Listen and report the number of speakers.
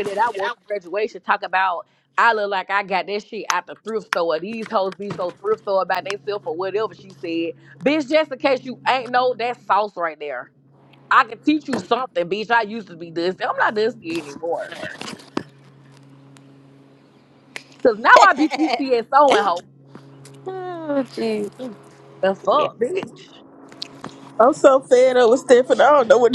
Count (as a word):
three